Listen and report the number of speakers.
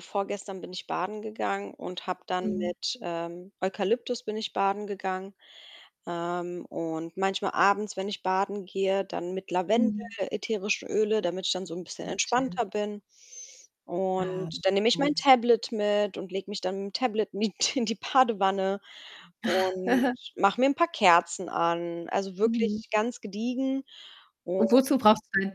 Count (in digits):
2